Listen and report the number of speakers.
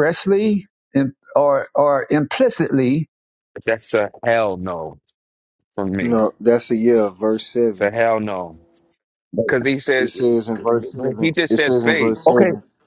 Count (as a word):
three